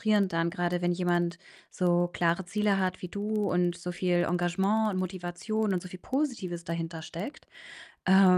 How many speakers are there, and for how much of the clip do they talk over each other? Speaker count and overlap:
1, no overlap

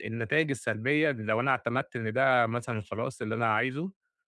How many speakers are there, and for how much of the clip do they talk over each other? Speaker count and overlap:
1, no overlap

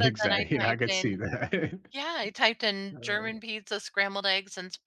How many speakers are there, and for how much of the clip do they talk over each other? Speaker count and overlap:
2, about 32%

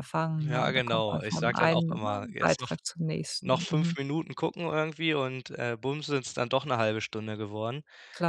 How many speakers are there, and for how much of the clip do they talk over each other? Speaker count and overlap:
2, about 29%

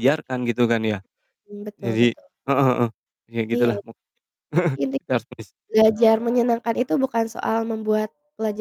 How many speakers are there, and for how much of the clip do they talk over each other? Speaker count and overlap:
2, about 6%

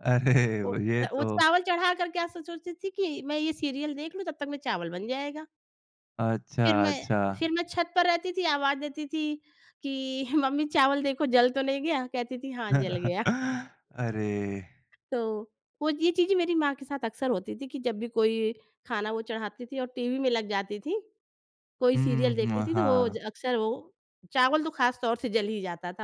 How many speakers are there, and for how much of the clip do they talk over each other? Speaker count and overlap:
2, about 8%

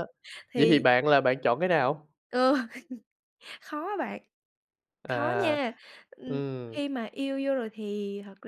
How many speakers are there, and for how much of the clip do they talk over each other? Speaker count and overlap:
2, about 11%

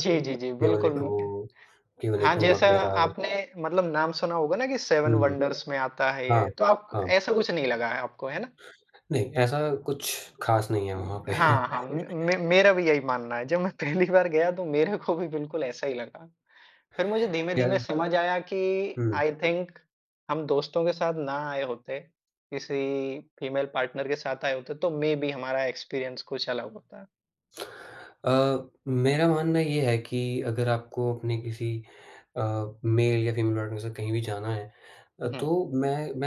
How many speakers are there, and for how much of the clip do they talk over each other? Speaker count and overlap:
2, about 8%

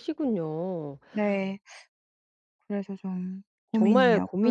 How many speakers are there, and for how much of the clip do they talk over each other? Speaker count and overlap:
2, about 17%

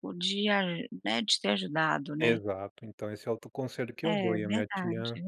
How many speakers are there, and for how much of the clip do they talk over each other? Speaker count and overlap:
2, about 25%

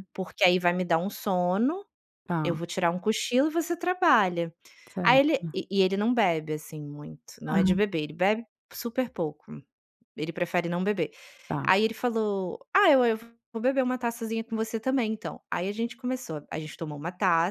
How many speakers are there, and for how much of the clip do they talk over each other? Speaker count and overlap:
2, about 6%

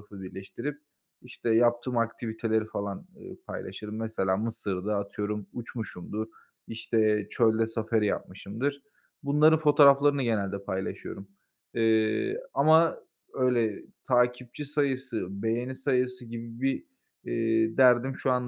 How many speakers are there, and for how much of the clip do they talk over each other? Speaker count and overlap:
1, no overlap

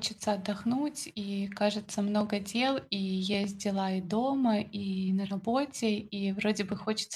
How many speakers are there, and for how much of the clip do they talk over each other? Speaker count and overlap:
1, no overlap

